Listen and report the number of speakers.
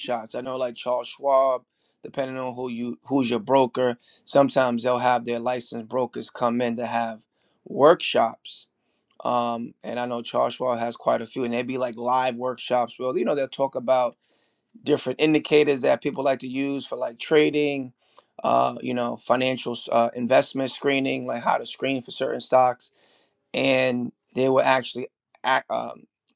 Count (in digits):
1